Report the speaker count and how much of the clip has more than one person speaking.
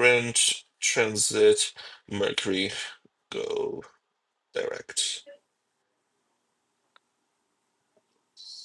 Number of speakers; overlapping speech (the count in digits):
1, no overlap